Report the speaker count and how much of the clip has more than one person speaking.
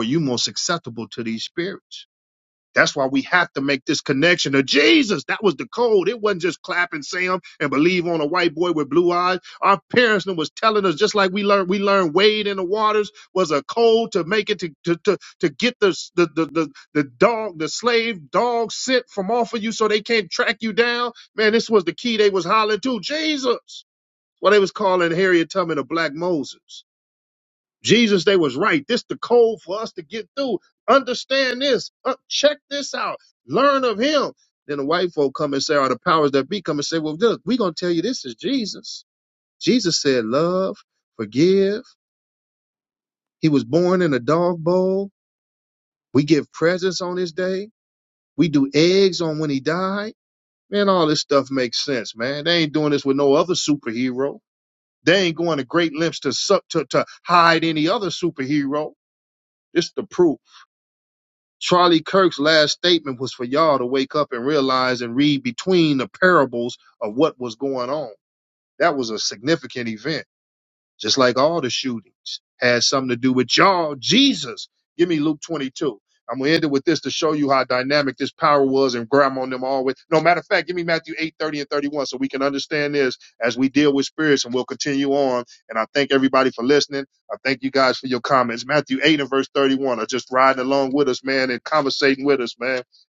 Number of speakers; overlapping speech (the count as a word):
one, no overlap